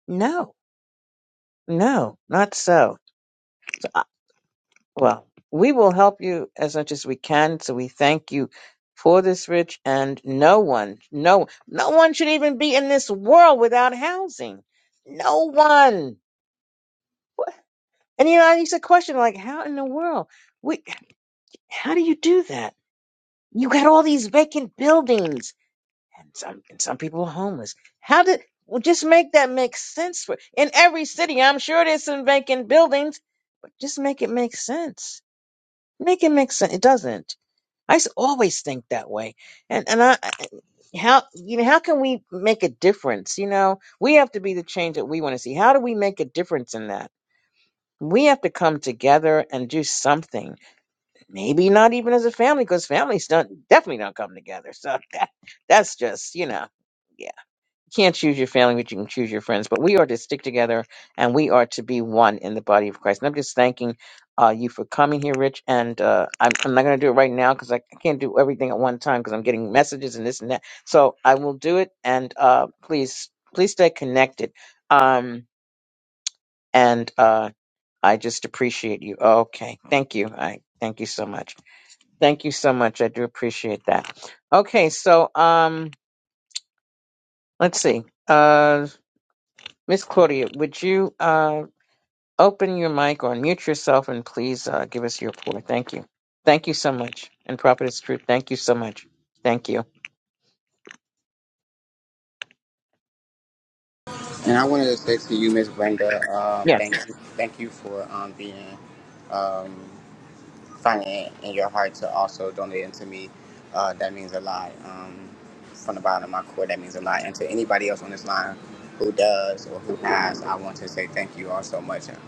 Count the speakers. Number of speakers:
2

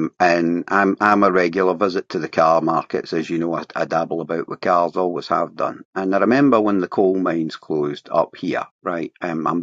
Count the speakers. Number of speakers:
1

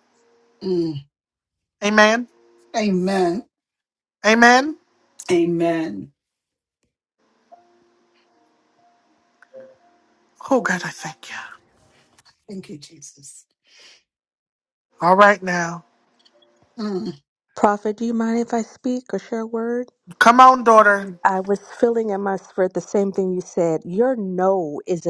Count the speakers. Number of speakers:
3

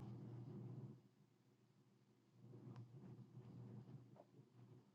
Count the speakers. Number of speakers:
0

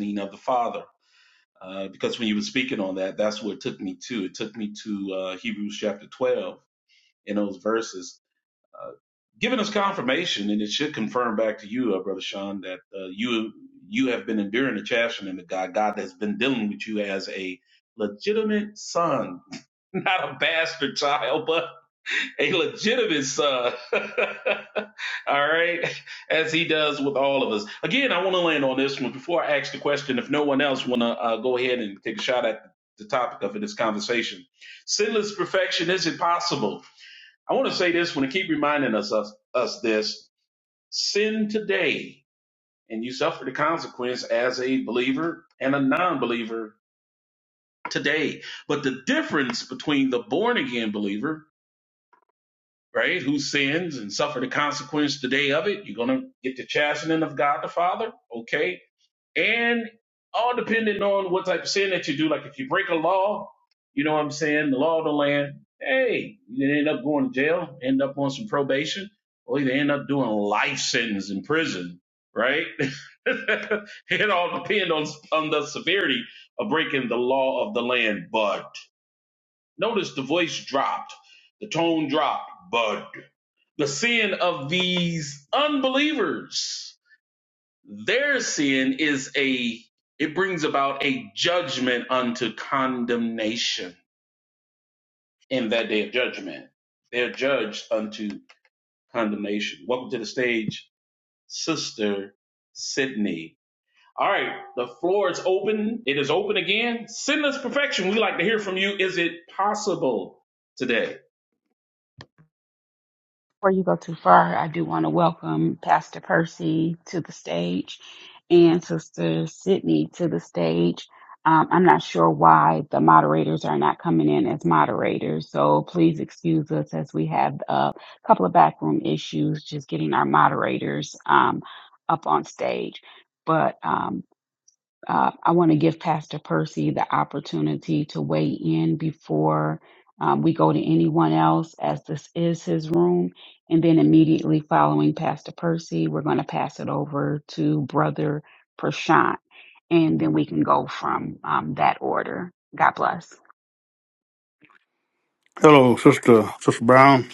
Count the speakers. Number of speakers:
3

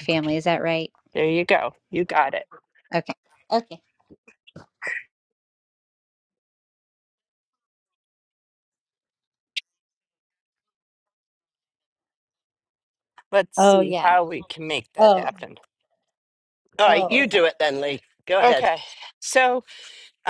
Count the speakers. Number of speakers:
3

